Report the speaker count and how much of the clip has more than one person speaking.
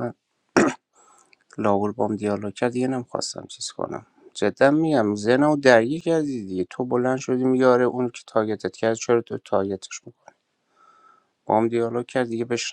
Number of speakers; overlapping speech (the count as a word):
one, no overlap